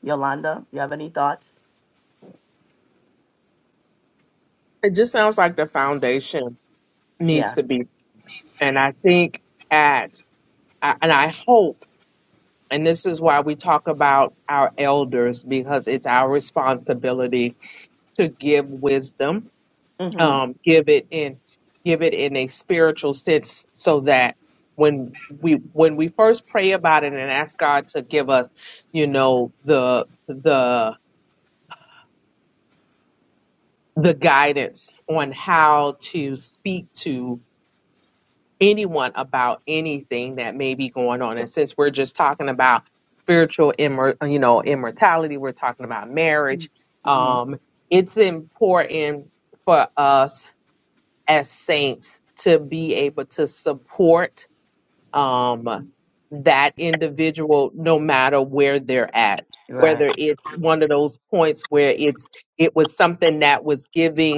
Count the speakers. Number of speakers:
2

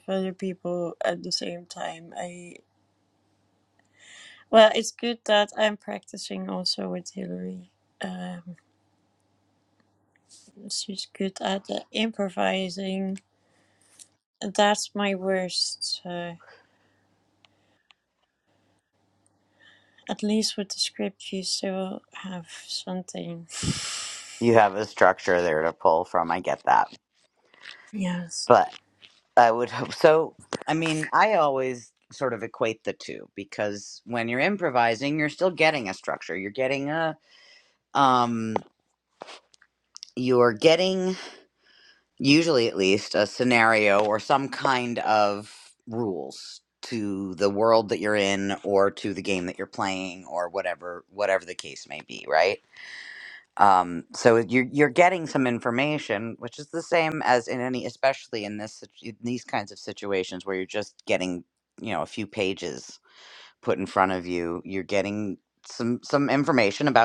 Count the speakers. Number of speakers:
2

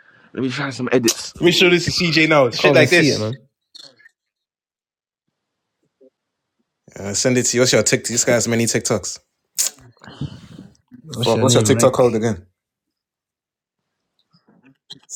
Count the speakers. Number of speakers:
3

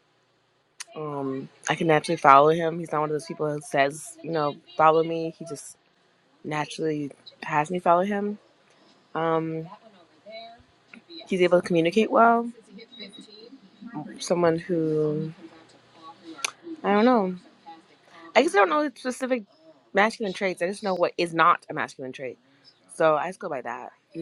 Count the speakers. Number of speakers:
1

